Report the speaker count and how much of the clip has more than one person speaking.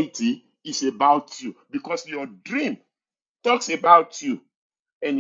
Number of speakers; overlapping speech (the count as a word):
one, no overlap